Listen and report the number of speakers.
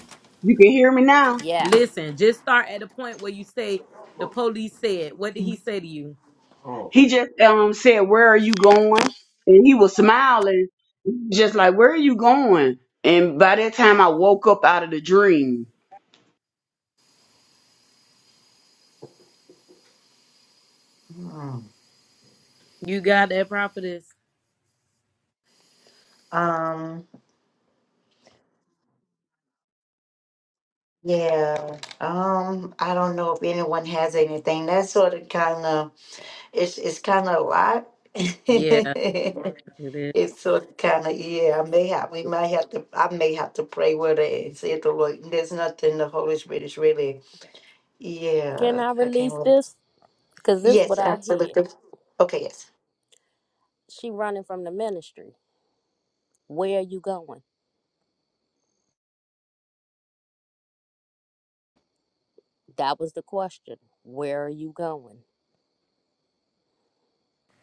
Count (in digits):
4